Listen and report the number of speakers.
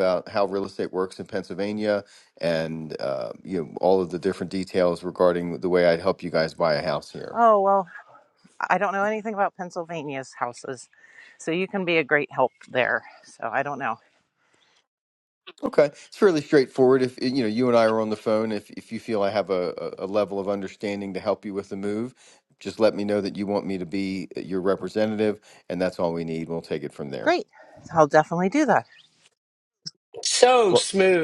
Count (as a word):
three